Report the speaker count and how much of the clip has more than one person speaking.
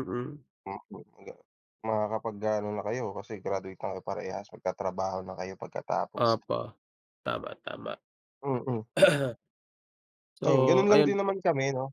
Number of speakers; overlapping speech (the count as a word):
two, about 6%